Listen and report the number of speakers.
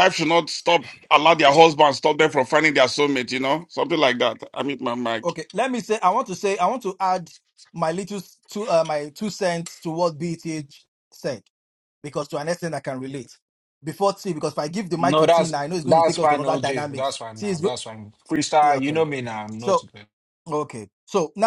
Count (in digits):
3